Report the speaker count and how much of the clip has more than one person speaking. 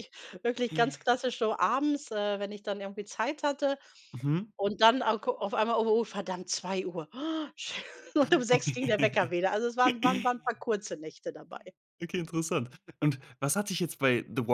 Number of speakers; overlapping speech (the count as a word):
two, no overlap